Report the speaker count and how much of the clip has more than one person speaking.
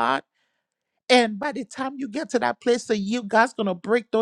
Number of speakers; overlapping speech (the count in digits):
1, no overlap